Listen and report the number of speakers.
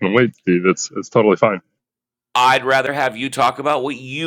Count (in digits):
2